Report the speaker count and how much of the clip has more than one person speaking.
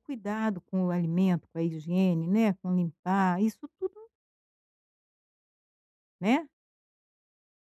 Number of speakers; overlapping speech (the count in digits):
1, no overlap